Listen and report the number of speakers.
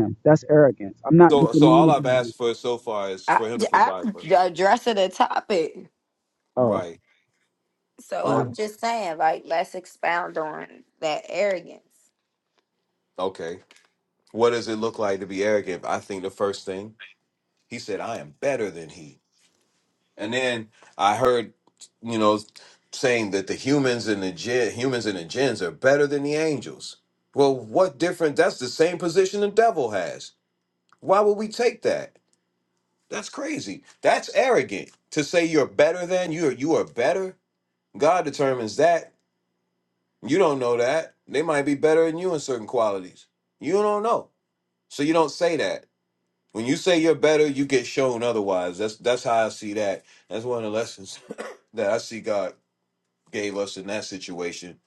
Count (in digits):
3